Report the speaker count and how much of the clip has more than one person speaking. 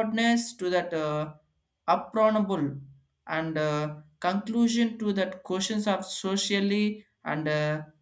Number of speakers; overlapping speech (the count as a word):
one, no overlap